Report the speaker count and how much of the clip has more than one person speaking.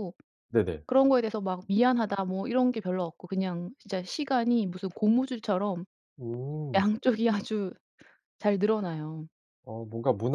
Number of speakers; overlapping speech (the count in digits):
2, about 1%